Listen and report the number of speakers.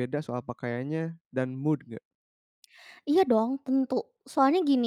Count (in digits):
2